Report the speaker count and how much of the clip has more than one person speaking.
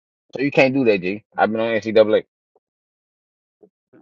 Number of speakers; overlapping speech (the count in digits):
1, no overlap